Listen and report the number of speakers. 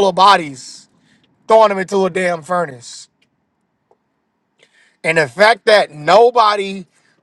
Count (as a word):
one